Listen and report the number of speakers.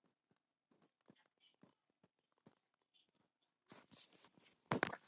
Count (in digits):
0